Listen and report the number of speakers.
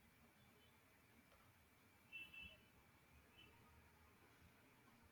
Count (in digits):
0